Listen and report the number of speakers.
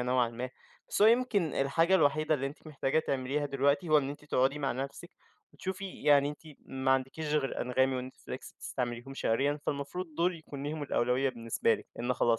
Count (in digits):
1